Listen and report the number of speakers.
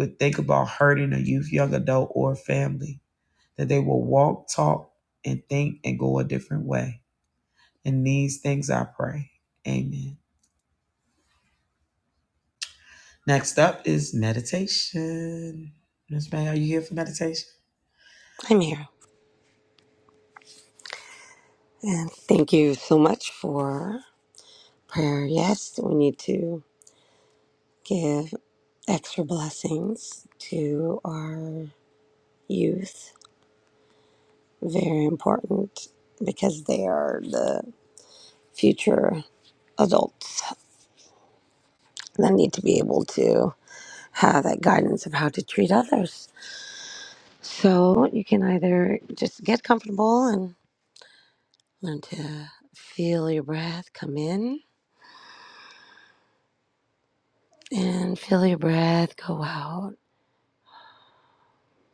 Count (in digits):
2